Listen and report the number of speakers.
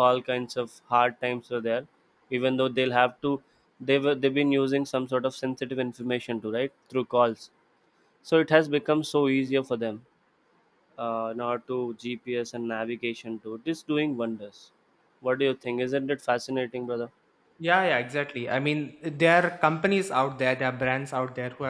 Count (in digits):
2